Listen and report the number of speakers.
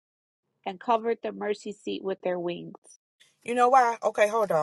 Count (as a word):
two